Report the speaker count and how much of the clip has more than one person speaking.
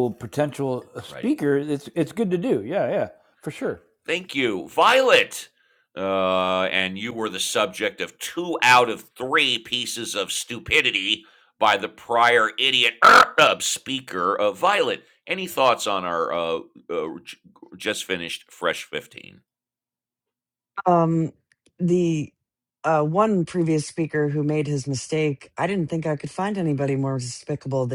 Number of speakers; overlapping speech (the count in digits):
3, about 1%